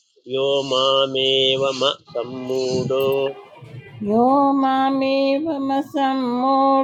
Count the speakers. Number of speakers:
2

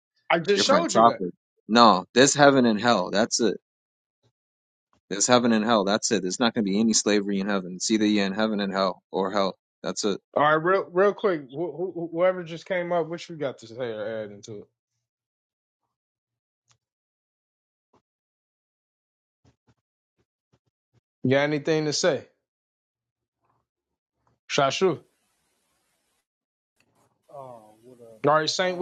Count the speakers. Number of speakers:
3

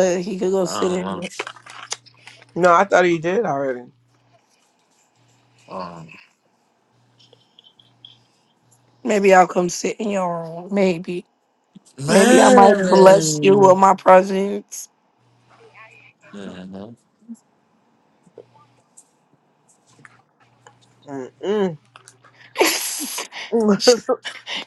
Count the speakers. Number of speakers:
3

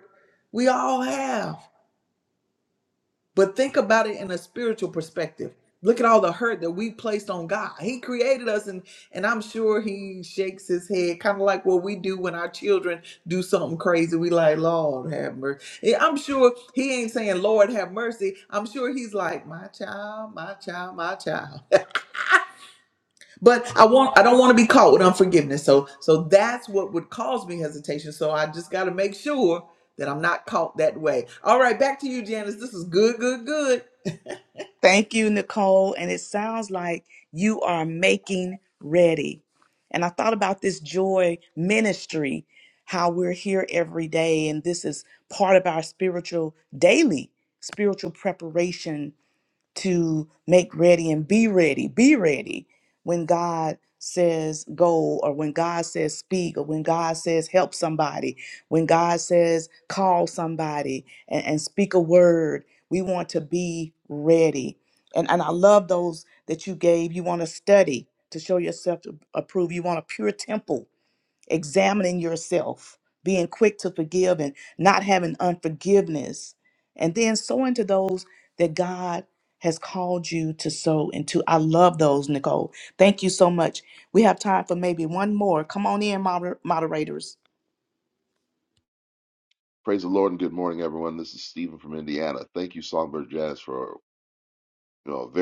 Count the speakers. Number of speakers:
3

